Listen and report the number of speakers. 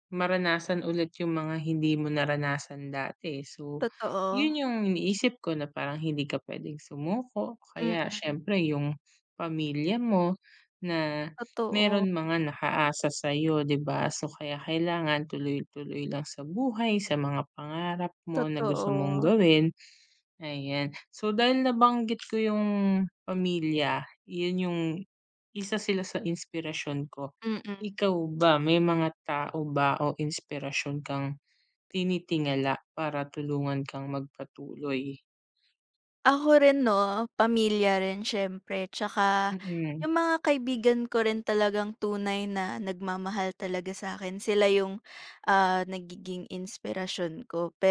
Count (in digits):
2